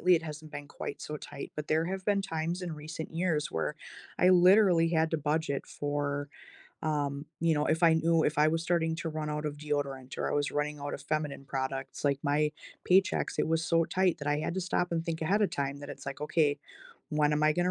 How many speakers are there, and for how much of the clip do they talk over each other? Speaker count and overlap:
one, no overlap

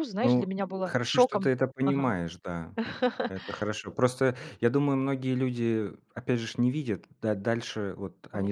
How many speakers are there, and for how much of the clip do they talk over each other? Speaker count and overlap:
two, about 16%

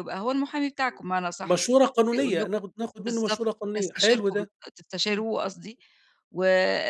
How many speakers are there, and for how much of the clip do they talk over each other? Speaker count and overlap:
two, about 24%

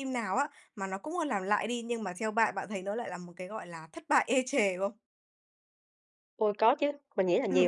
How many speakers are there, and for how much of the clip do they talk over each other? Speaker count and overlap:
two, about 3%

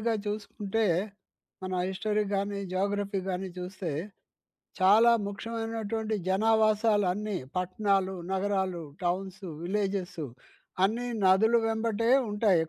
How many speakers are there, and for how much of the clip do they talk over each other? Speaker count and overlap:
one, no overlap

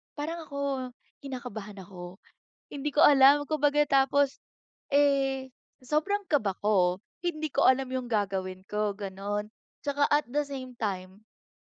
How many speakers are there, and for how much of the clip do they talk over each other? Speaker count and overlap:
one, no overlap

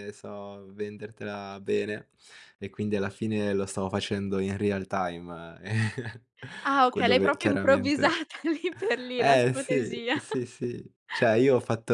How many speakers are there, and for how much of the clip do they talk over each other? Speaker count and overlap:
two, about 18%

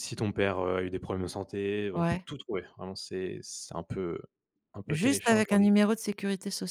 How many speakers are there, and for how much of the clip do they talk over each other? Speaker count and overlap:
two, about 16%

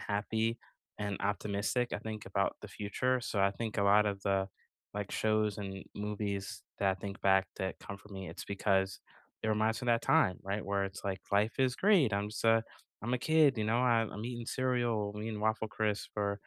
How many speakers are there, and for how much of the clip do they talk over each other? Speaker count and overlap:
one, no overlap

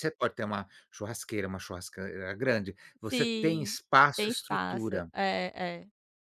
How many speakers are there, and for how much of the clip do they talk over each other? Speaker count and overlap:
two, about 24%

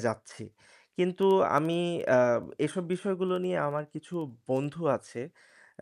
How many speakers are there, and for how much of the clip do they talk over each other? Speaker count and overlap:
one, no overlap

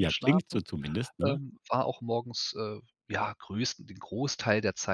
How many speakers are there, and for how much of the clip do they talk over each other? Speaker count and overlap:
two, about 16%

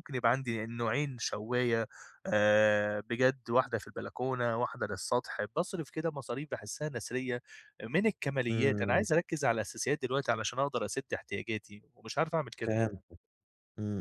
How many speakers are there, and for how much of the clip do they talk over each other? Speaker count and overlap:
two, about 4%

